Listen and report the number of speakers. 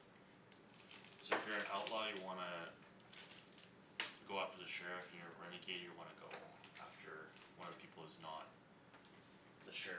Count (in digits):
1